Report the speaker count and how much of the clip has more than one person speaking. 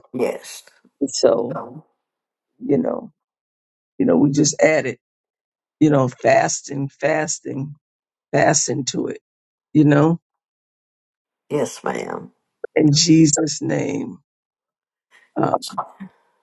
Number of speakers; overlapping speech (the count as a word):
two, under 1%